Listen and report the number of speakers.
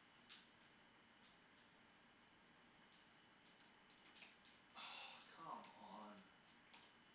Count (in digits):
1